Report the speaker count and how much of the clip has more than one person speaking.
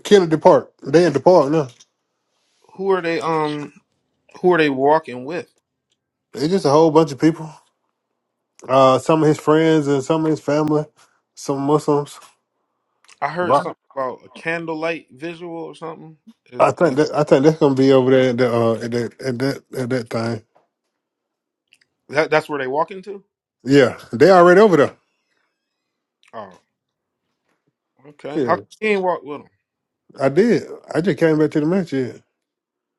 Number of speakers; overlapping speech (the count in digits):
2, about 1%